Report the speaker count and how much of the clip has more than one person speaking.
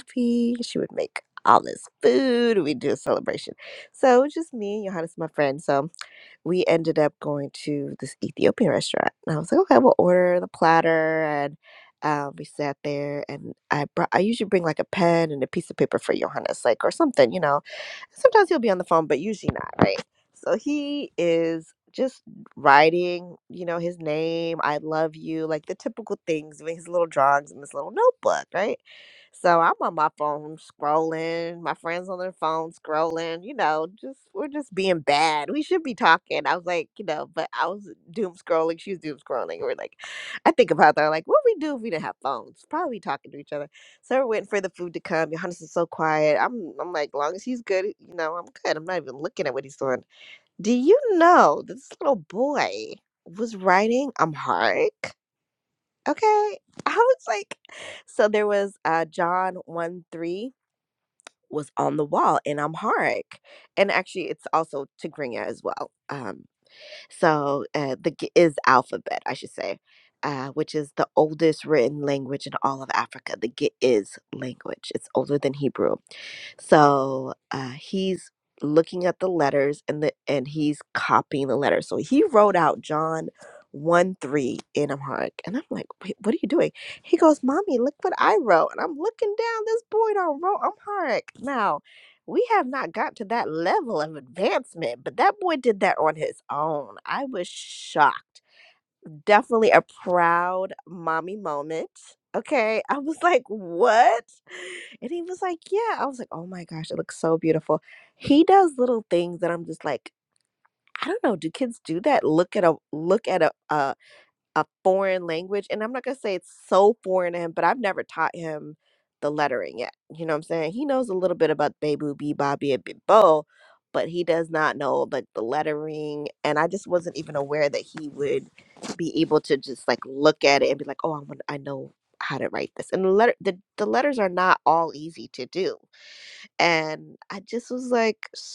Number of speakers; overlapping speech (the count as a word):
one, no overlap